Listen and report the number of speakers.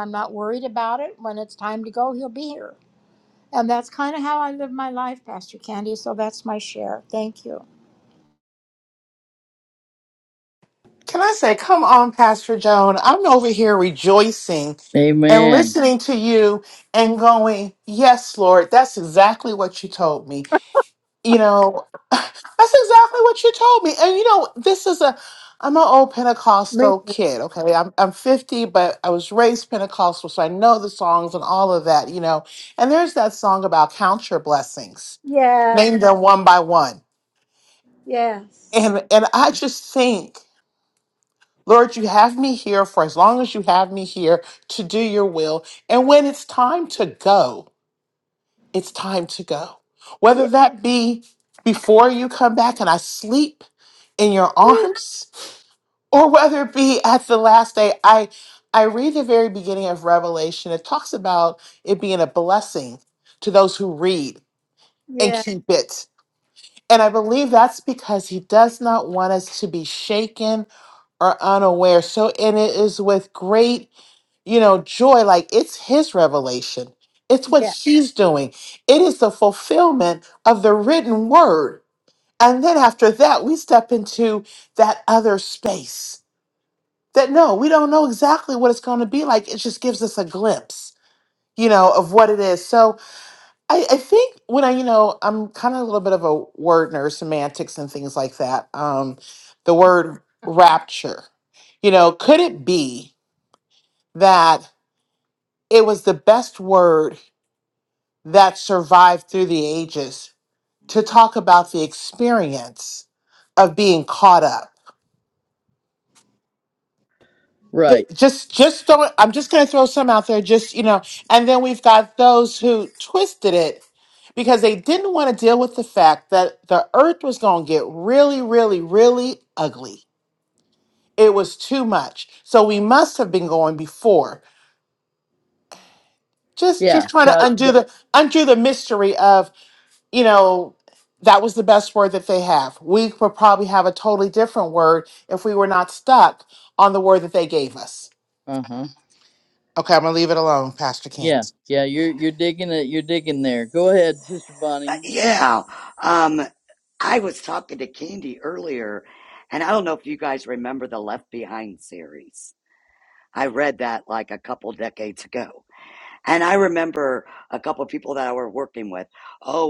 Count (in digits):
4